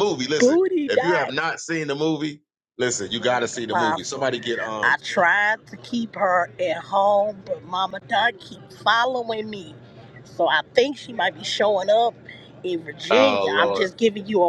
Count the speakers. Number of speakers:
two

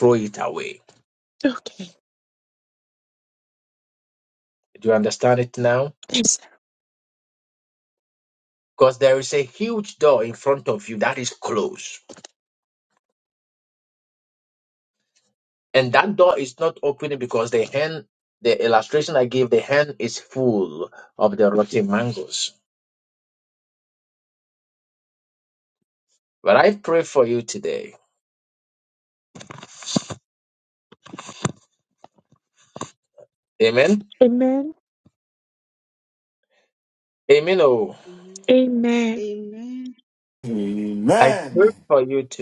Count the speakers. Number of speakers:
four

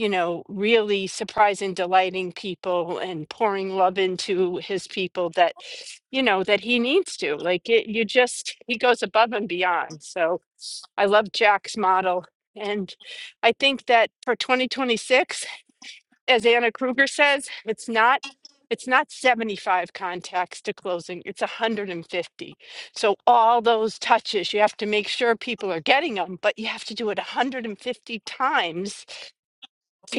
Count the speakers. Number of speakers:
one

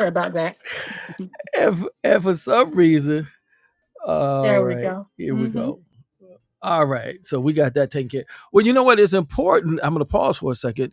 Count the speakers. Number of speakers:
two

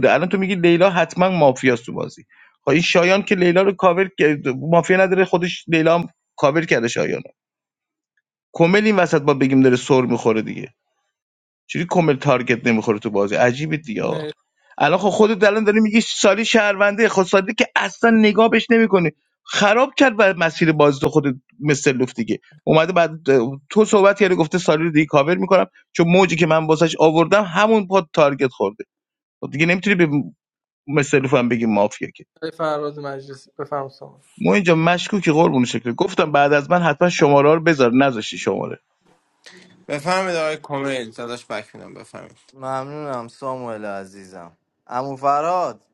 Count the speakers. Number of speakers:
four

